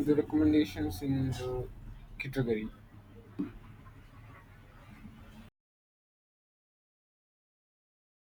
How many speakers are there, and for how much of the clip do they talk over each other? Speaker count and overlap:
1, no overlap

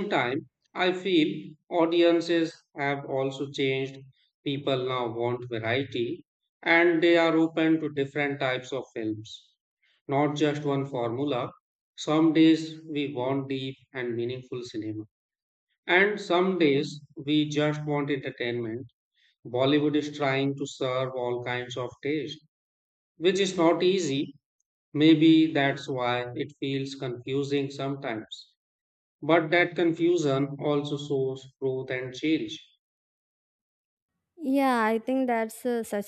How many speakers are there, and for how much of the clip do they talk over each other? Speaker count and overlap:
2, no overlap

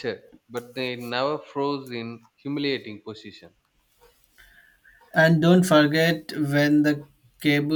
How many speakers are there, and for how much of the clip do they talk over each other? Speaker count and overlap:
2, no overlap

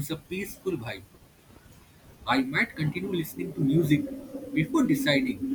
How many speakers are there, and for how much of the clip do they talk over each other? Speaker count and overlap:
1, no overlap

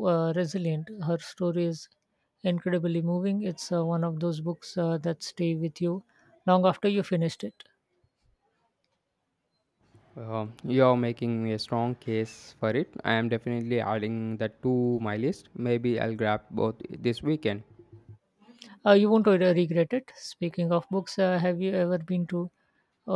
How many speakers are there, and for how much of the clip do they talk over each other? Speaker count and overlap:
2, no overlap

